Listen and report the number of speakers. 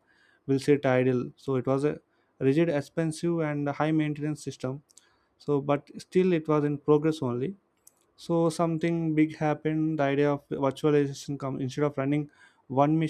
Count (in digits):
1